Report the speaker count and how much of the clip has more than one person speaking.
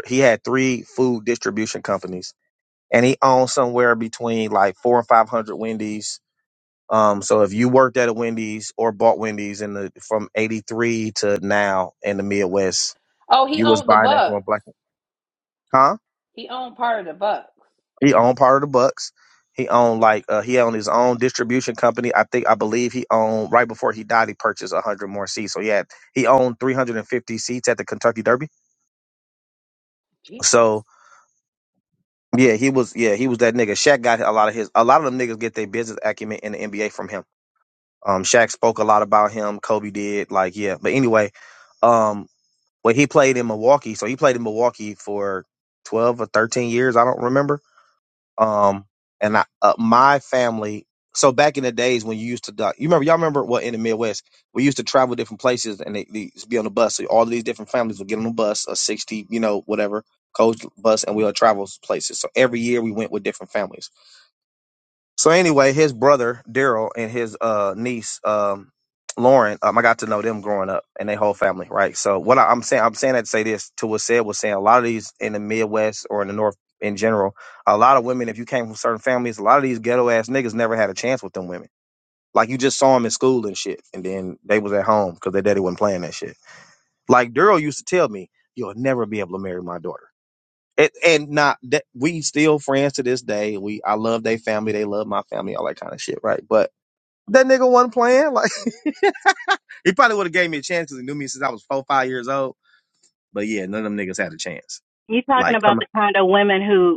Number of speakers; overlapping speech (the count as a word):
three, about 1%